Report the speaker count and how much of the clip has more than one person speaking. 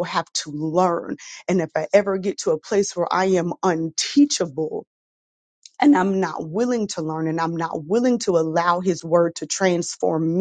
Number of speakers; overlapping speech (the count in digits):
1, no overlap